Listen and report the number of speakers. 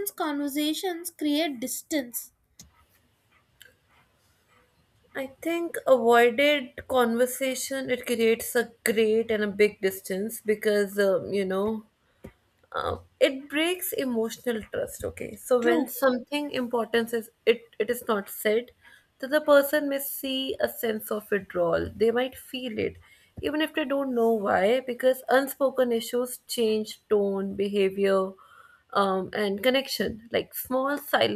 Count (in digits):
2